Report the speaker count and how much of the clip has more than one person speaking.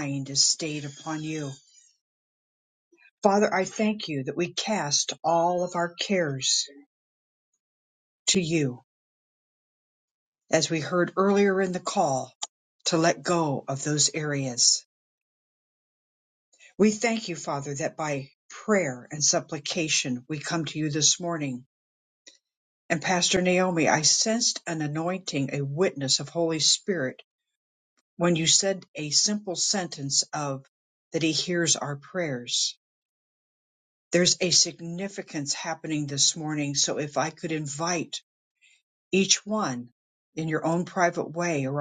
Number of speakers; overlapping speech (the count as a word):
one, no overlap